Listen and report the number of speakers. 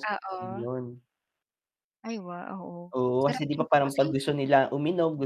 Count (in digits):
2